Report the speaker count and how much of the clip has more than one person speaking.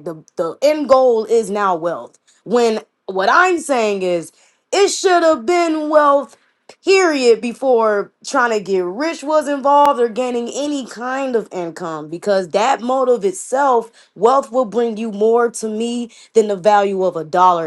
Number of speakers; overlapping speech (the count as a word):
one, no overlap